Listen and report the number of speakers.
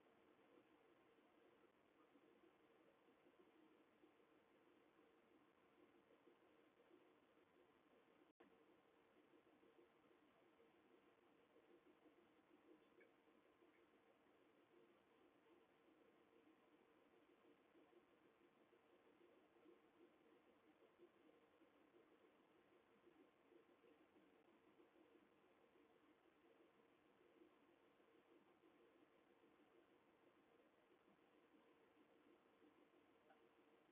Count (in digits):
0